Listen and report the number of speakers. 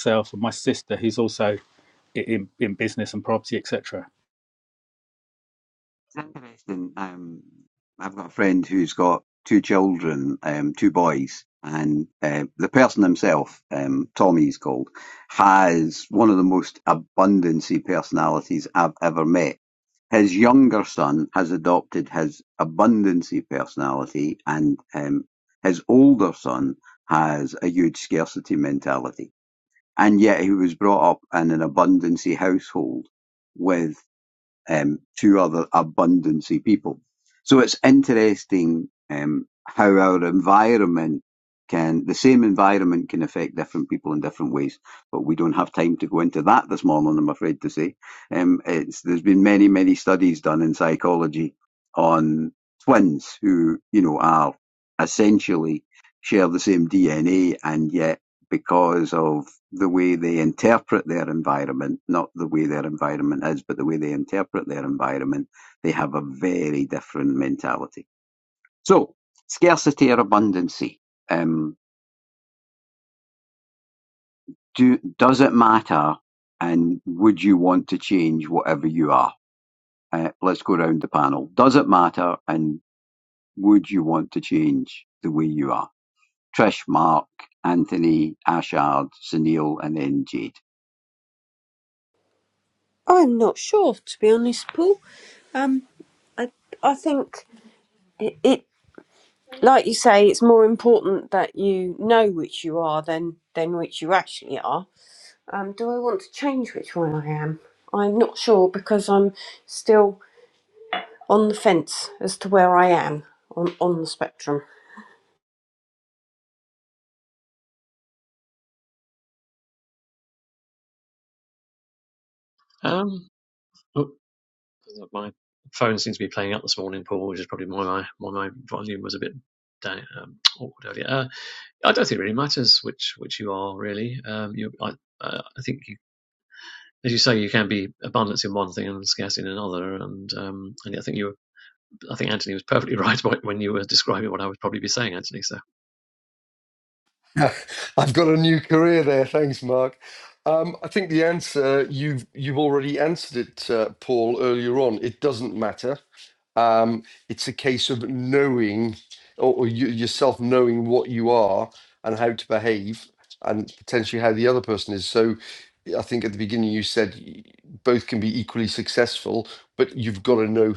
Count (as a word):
five